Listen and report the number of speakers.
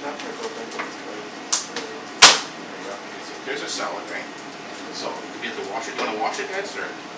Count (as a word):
two